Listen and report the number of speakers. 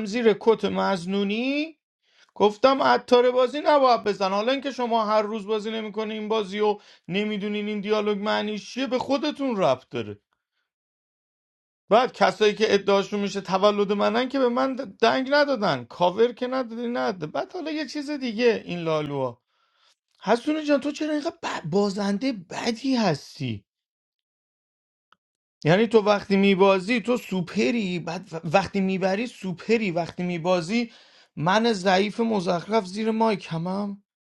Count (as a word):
one